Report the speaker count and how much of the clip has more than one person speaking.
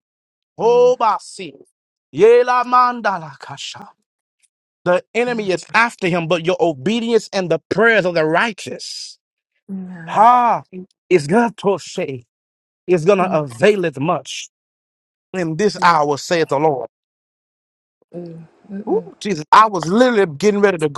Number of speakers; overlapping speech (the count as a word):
two, about 2%